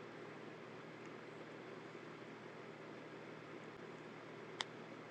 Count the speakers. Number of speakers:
0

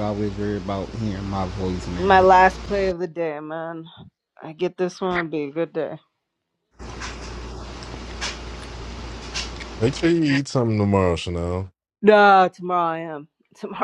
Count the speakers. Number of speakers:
3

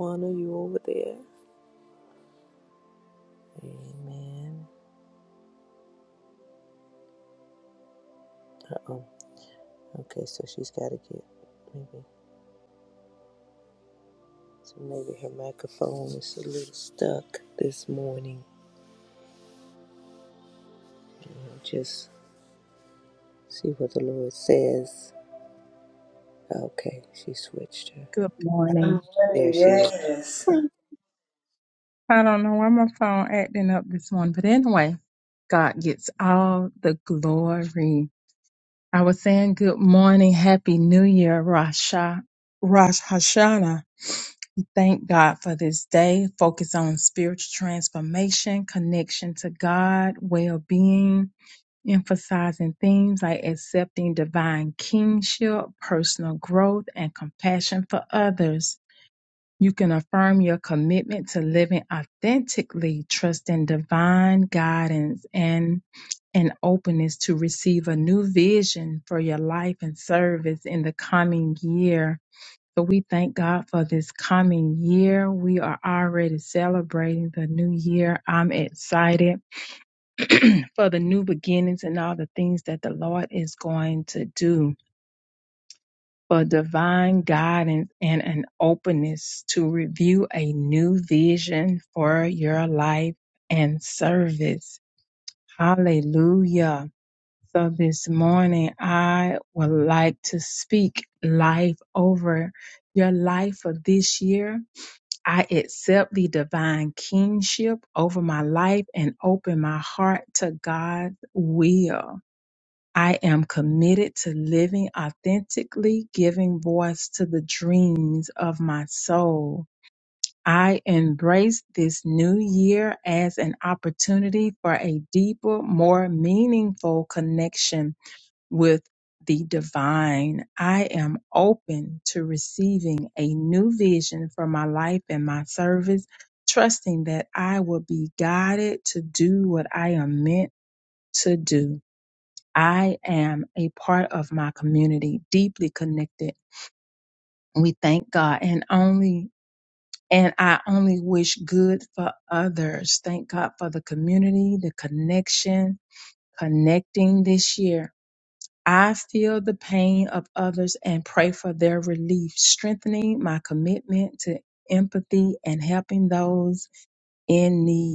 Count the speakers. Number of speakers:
3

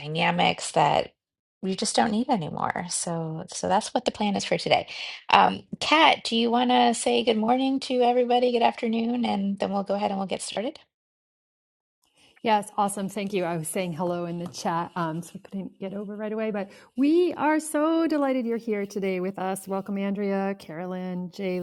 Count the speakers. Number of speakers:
2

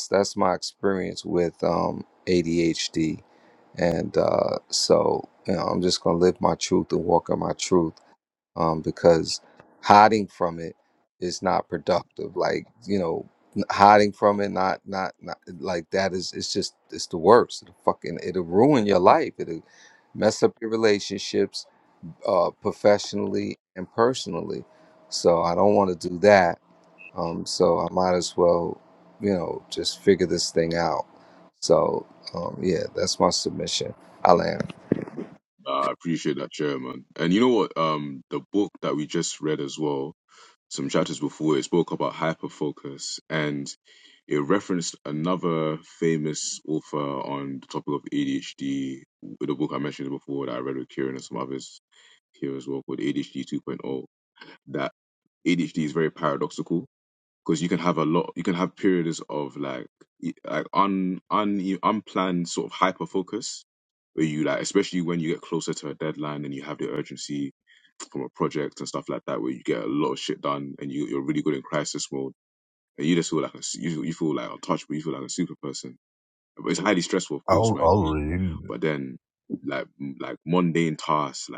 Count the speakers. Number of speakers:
3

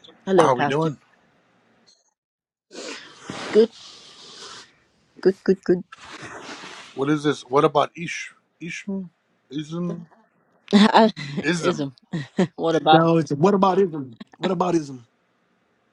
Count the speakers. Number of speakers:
3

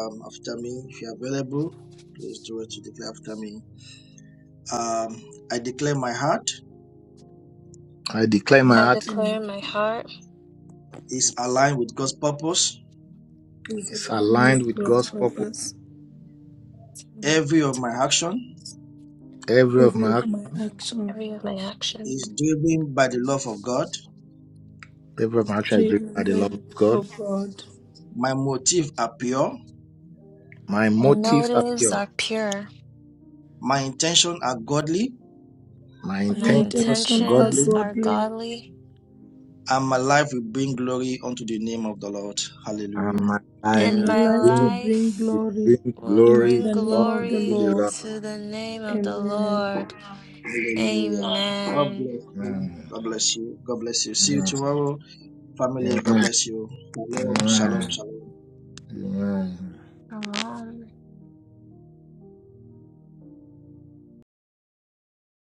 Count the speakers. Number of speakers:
4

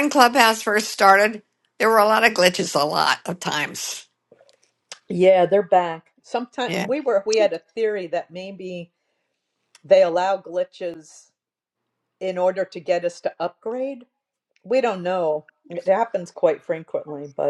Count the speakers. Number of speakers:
2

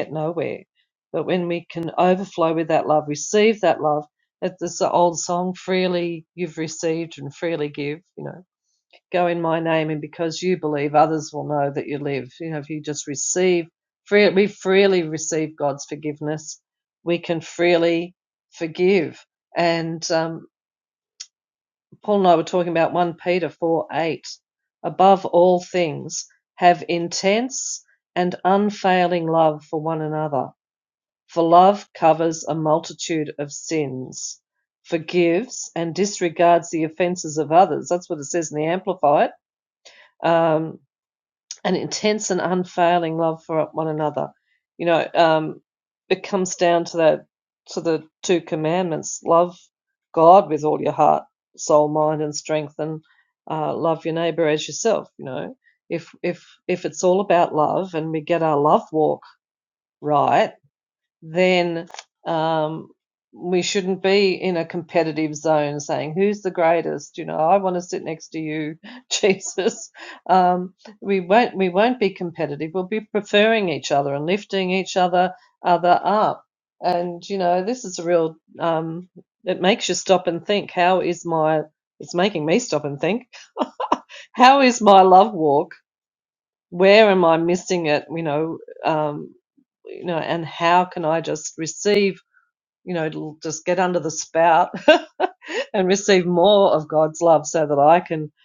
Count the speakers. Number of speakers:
1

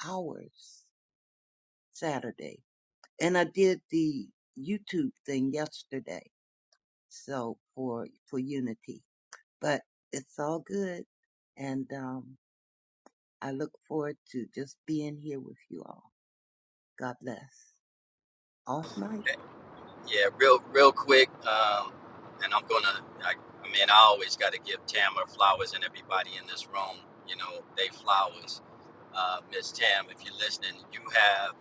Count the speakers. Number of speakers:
2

